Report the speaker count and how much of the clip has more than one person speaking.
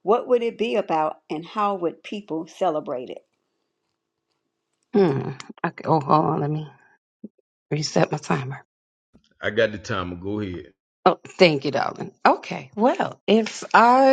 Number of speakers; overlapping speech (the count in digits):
3, no overlap